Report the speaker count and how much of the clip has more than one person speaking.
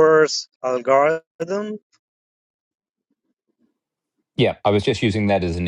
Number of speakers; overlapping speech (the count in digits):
2, no overlap